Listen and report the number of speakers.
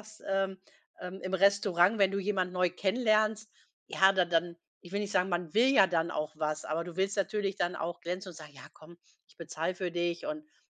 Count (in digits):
1